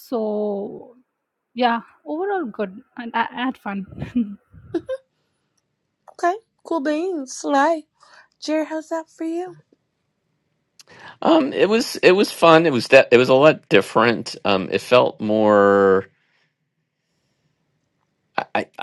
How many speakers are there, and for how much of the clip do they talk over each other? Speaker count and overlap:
3, no overlap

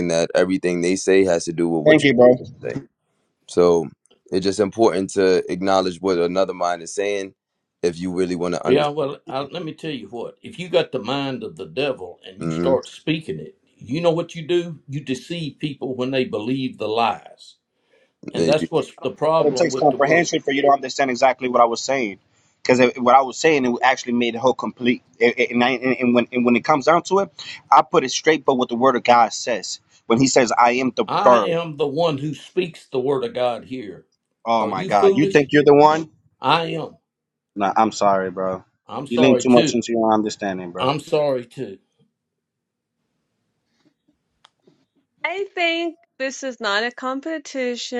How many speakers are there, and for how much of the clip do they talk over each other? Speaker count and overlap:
4, about 8%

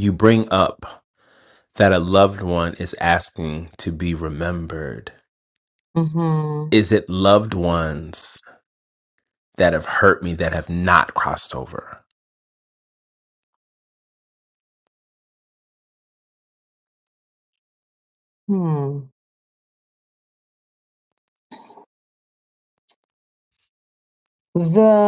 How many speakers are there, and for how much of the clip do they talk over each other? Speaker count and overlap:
2, no overlap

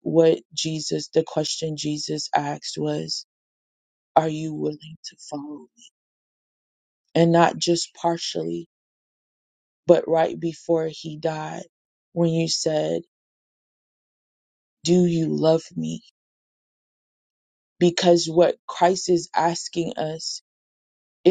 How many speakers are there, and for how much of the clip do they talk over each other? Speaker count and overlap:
1, no overlap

